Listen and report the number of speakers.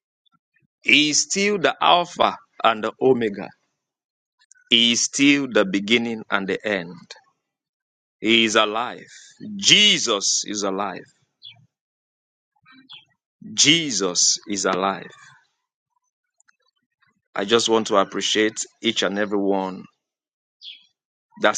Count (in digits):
1